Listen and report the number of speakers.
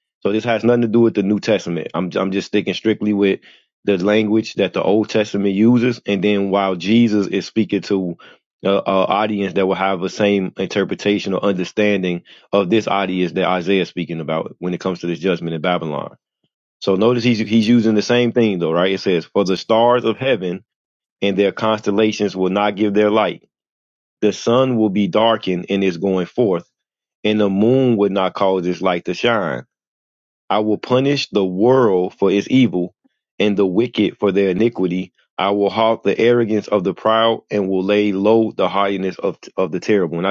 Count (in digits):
1